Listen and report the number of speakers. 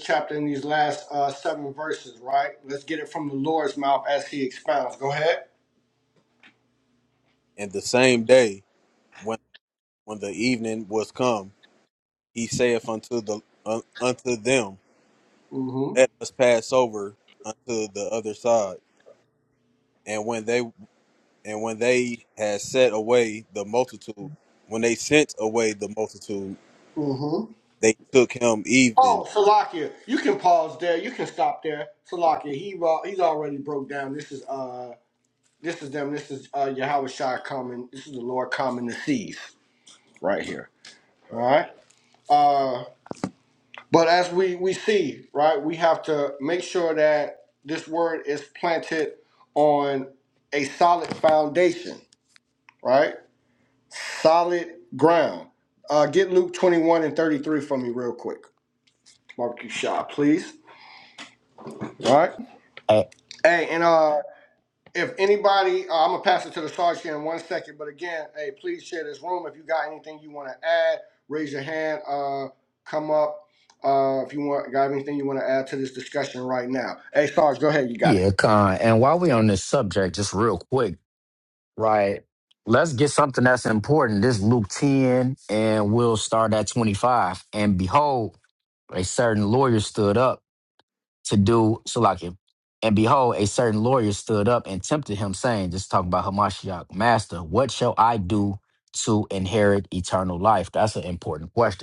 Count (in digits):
3